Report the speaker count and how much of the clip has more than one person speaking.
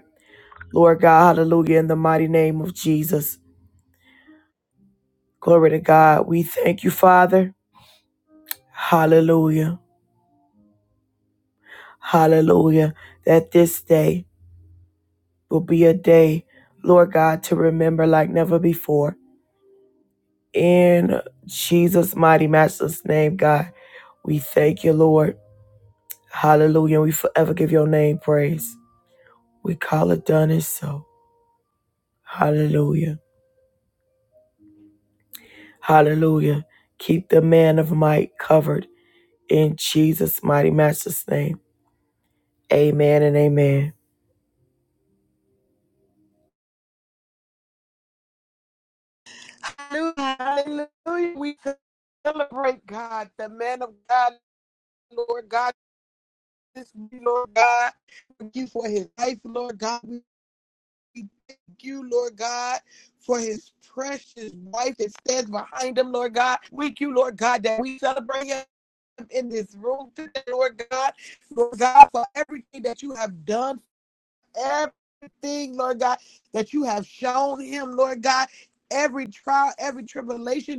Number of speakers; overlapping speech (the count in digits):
2, no overlap